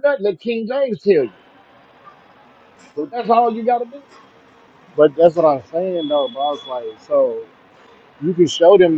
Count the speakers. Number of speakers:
two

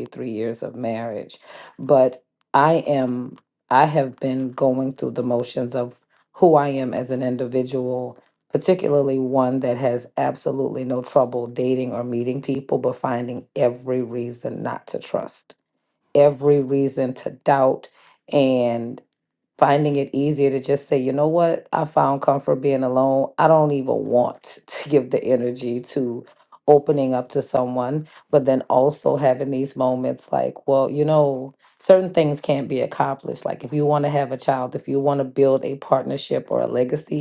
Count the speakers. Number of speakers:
one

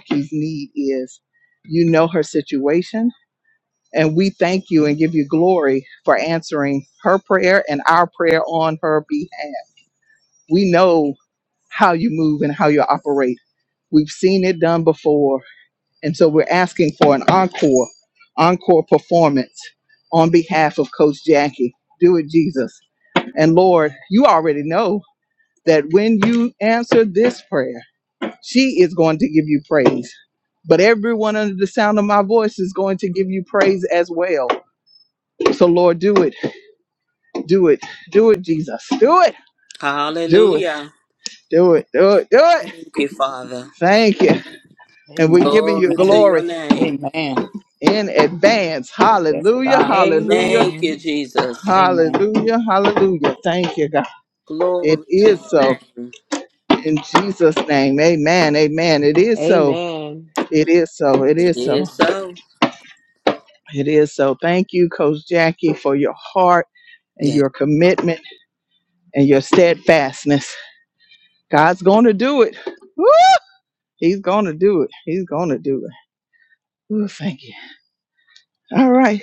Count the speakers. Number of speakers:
four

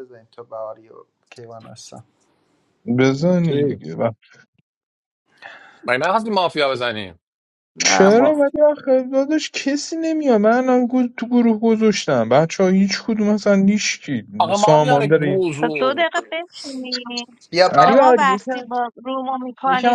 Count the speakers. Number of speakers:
four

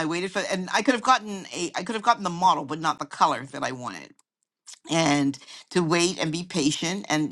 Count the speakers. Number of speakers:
one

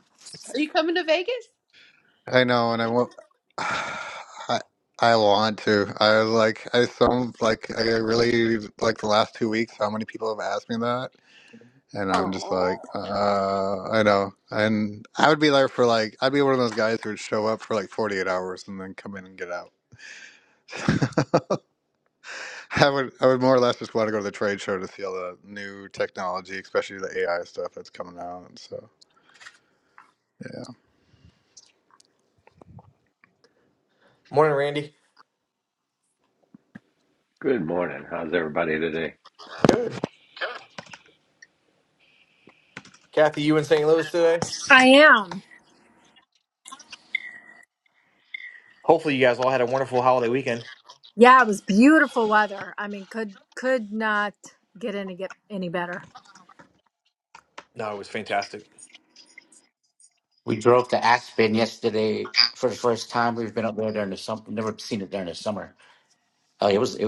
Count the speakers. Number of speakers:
six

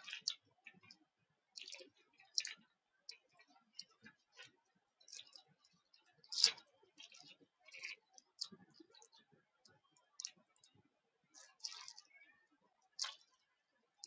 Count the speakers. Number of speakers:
zero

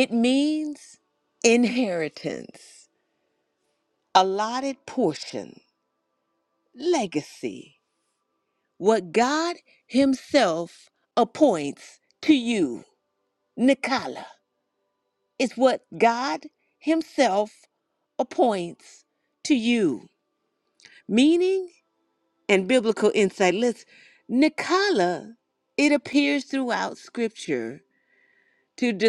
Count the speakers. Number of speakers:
one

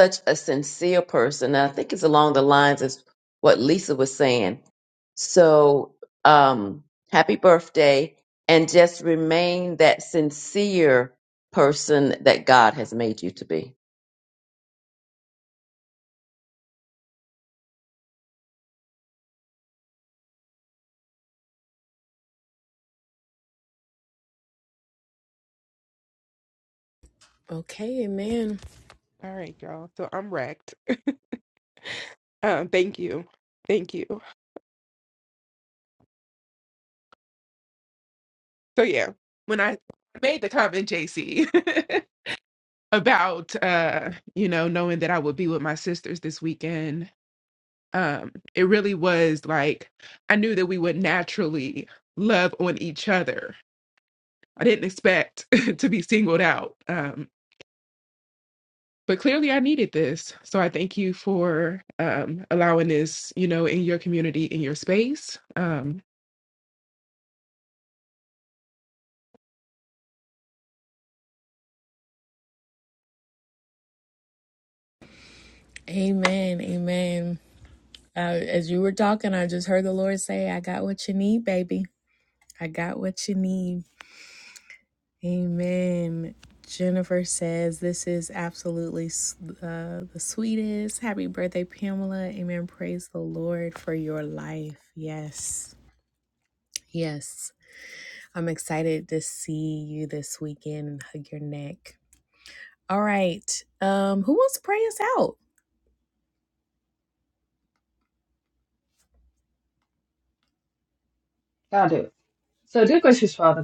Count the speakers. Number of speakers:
four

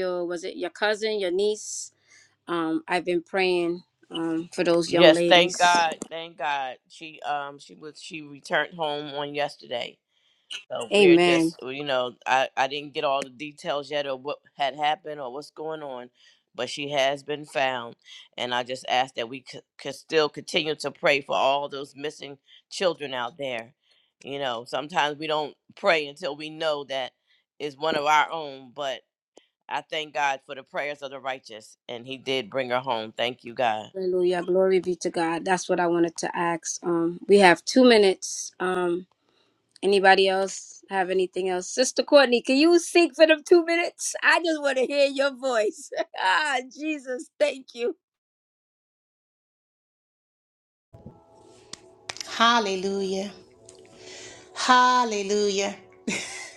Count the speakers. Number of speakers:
three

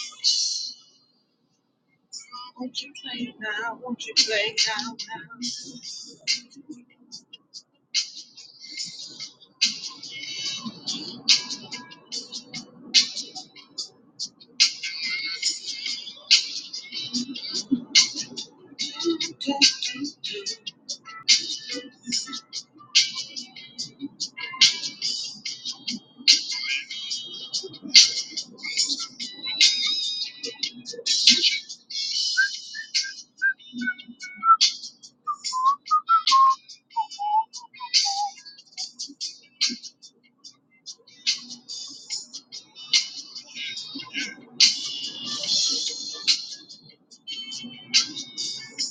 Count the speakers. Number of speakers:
one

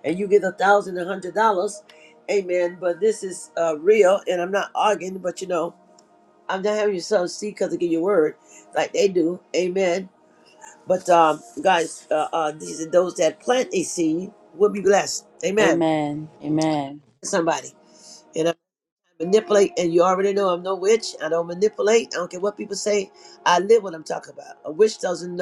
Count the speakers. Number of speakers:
two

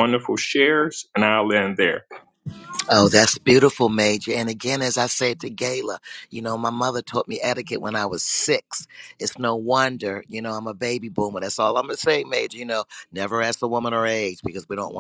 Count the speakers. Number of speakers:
two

